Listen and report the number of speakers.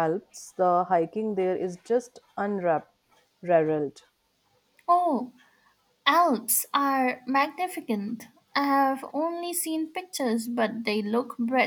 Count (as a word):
two